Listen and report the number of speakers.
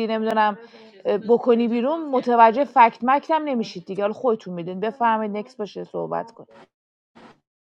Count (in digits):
1